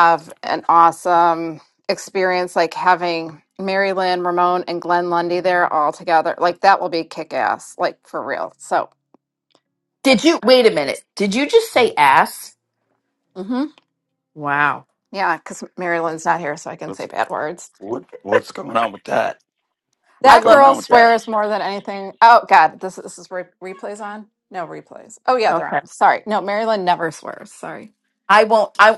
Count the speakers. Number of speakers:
3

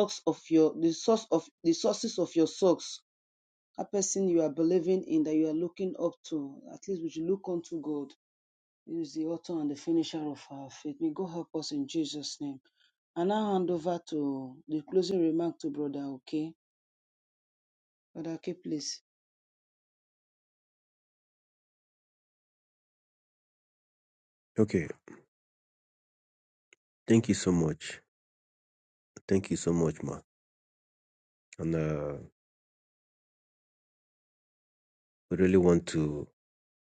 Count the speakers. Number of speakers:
2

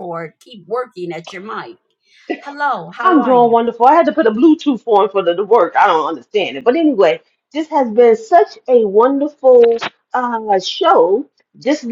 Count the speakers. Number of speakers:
2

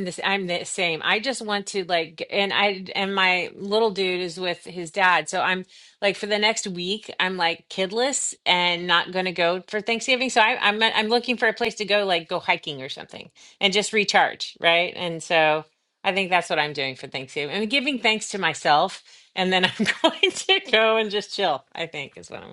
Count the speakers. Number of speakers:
1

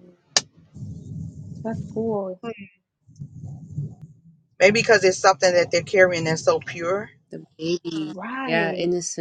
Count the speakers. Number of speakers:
3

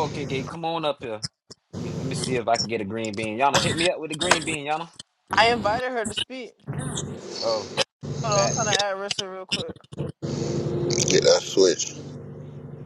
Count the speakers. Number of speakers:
3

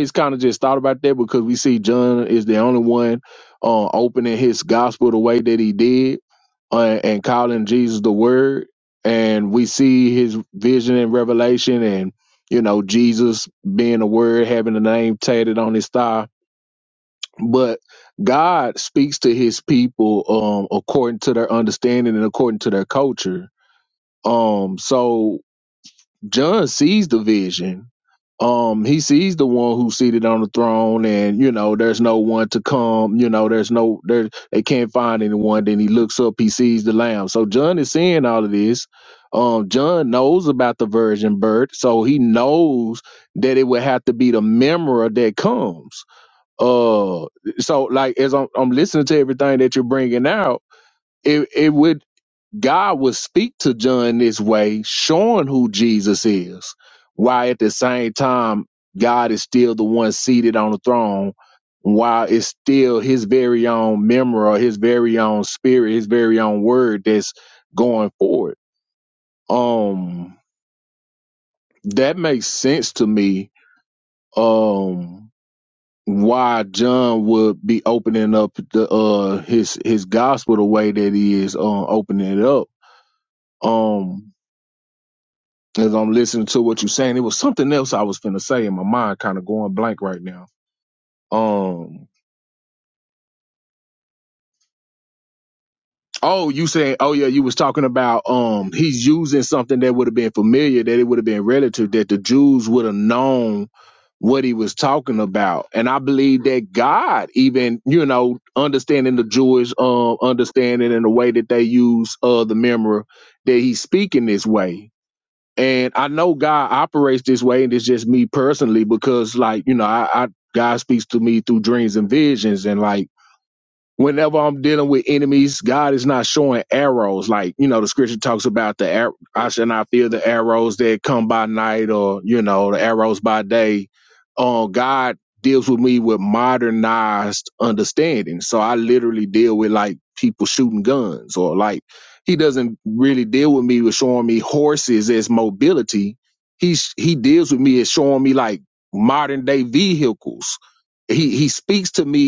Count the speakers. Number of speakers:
1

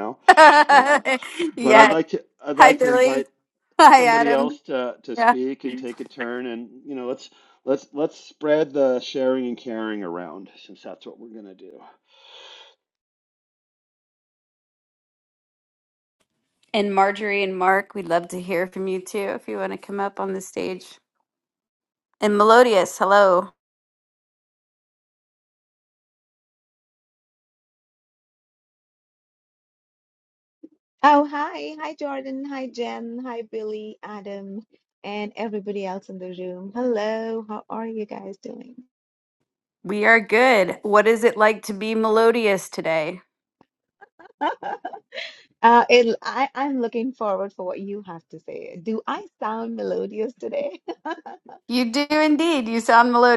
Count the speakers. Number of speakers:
3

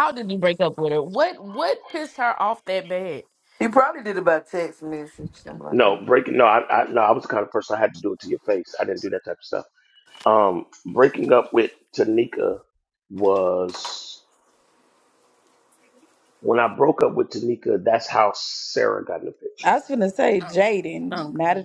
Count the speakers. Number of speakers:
4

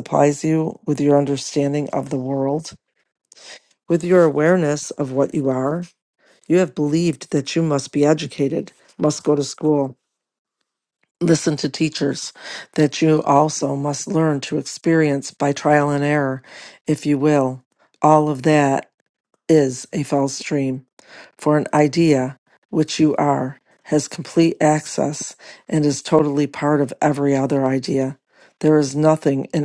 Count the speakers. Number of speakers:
1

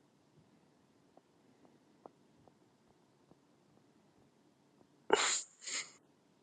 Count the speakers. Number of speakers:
0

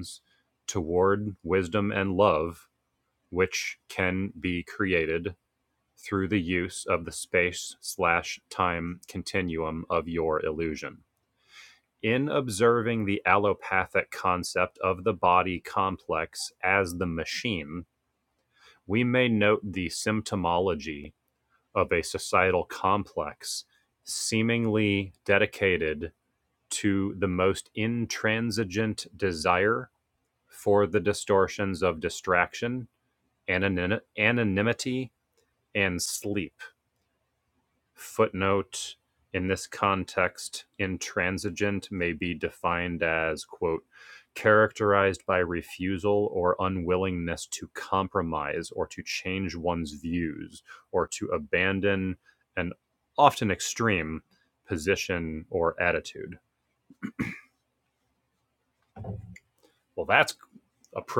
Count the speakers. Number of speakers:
1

